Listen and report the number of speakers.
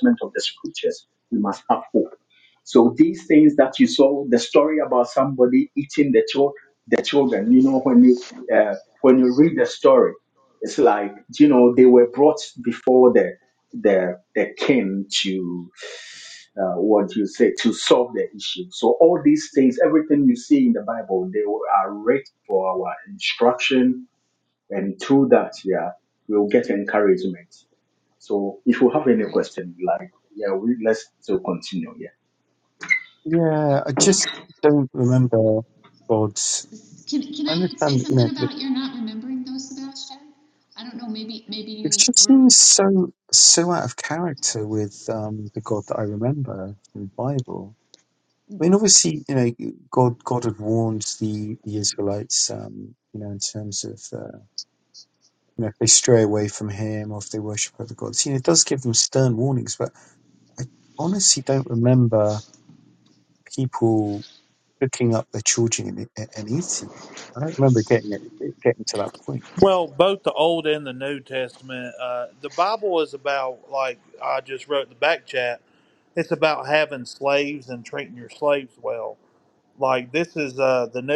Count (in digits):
4